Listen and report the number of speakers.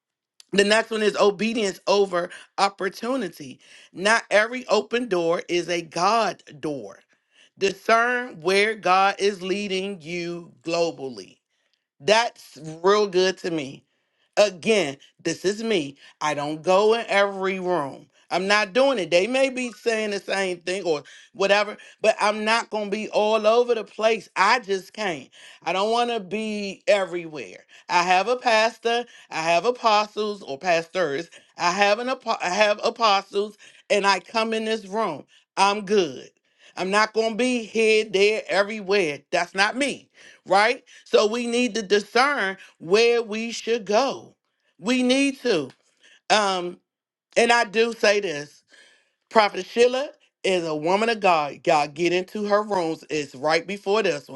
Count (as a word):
one